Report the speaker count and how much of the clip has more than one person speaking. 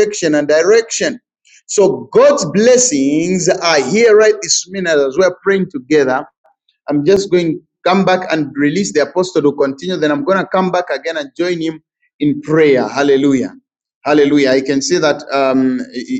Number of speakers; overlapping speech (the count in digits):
1, no overlap